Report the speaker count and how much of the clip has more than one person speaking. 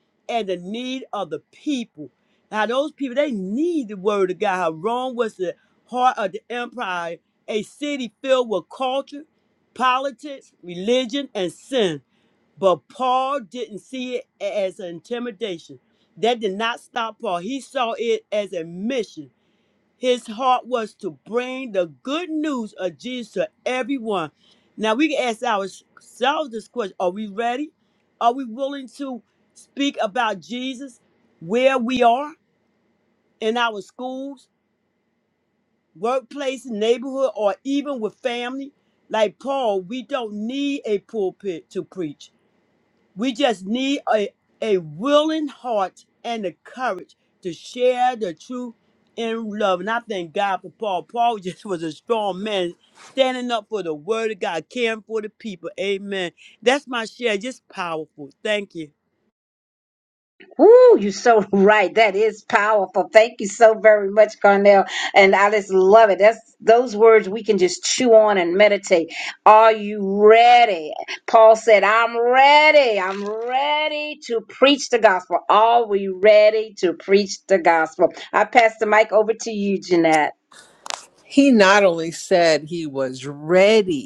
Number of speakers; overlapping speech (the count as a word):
three, no overlap